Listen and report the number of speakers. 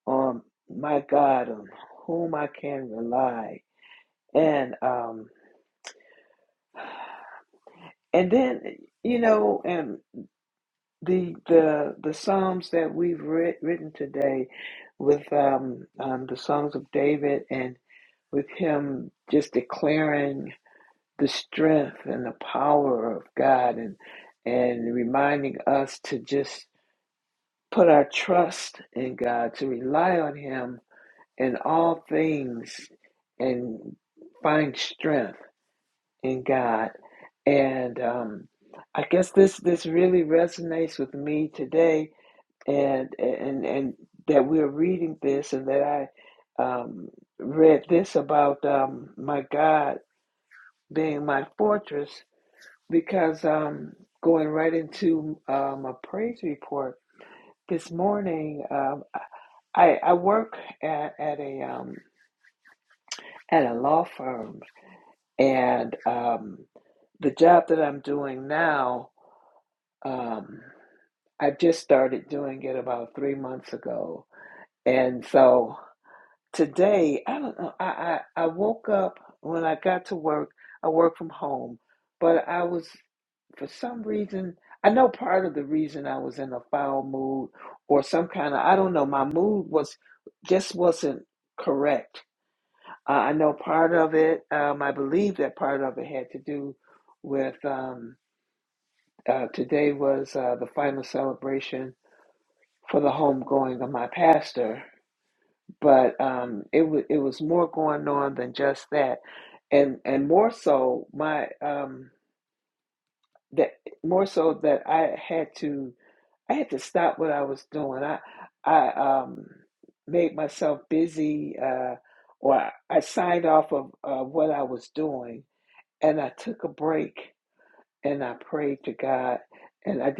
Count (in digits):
1